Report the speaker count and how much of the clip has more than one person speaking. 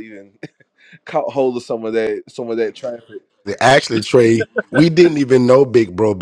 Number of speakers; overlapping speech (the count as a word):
two, no overlap